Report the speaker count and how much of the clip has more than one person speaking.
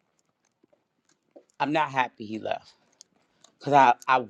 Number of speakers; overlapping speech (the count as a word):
one, no overlap